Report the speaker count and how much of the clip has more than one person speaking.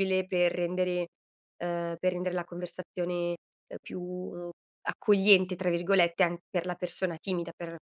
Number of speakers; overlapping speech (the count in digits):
1, no overlap